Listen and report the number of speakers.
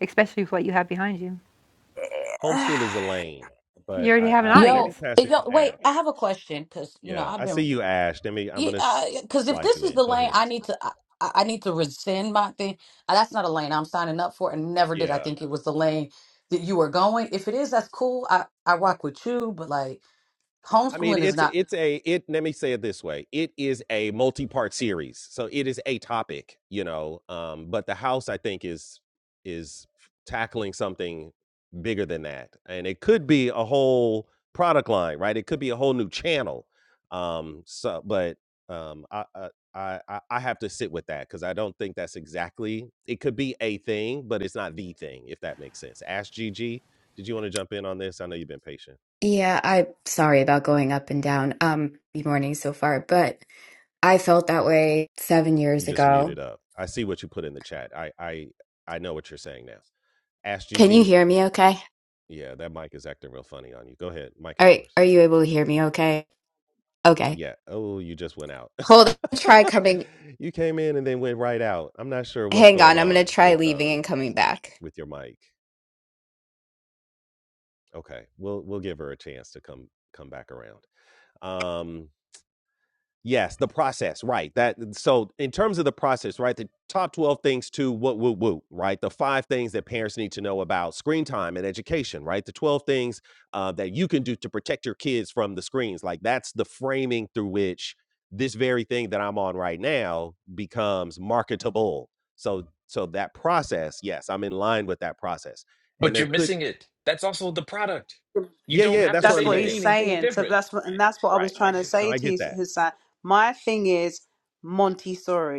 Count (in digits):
6